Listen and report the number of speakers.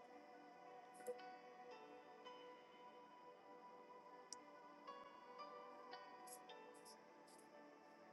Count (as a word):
zero